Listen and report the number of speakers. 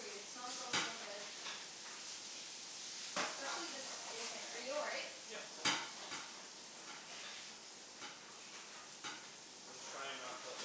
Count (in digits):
2